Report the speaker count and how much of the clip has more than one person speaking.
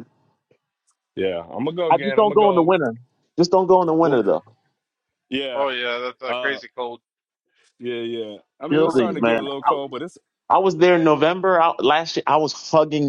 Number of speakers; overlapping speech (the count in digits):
3, about 20%